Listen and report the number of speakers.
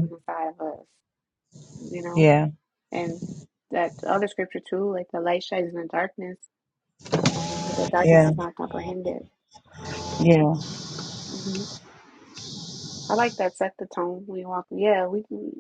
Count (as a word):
two